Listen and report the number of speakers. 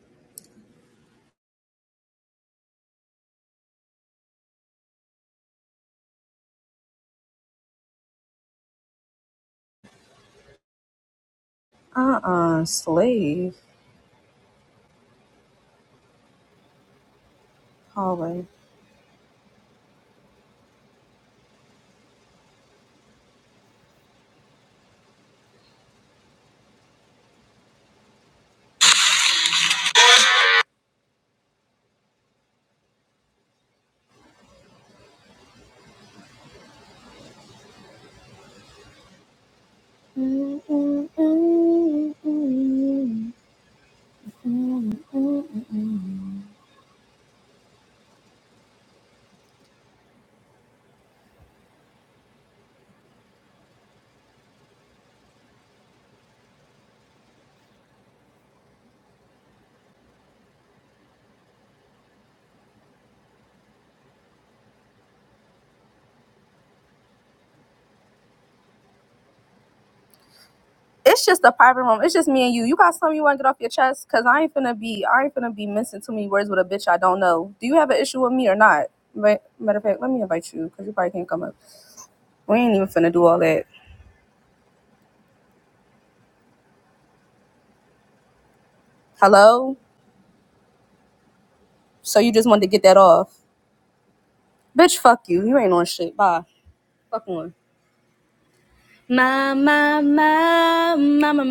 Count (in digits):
1